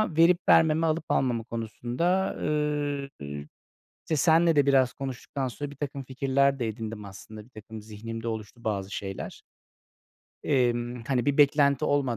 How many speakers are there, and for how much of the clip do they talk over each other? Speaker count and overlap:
one, no overlap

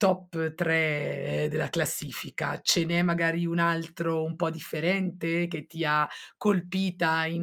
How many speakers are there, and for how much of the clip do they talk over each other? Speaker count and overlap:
one, no overlap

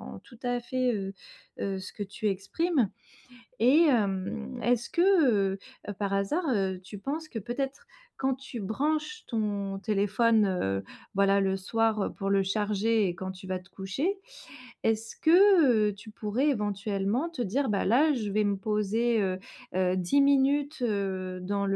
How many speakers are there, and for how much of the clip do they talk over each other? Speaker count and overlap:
one, no overlap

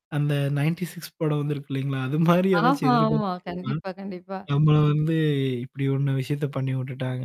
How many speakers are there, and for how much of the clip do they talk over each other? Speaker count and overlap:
two, about 18%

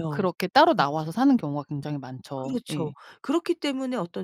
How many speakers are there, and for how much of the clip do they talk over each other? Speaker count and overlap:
two, about 19%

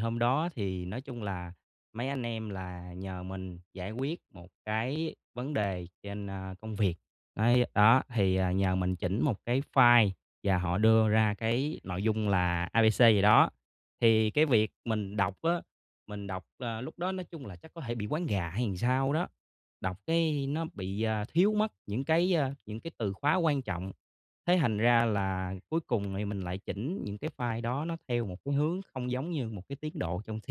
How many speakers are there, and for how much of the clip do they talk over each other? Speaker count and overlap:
one, no overlap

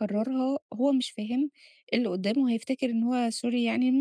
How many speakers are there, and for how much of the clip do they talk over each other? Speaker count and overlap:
one, no overlap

